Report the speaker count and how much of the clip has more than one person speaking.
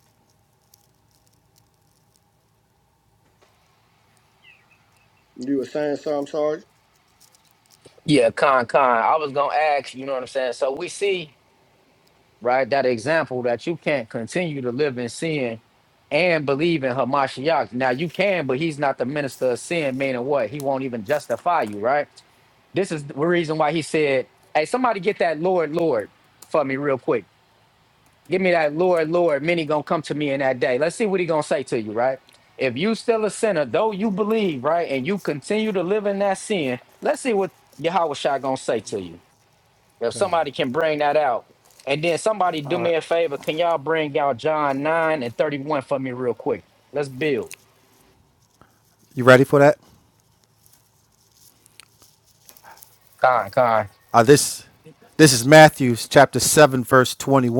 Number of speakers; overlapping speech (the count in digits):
3, about 1%